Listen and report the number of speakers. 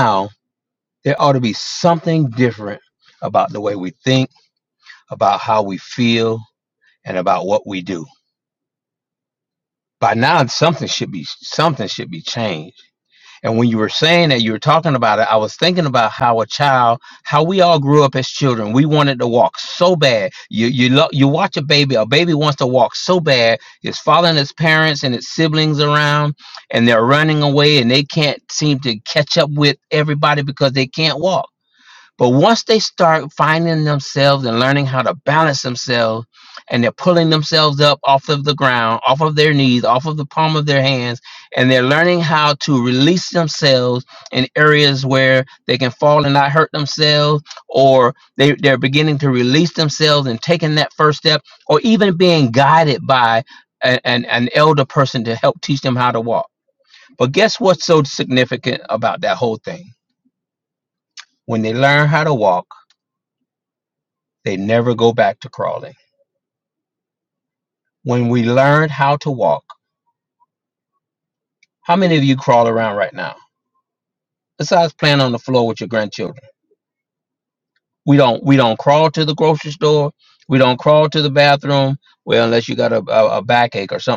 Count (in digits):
1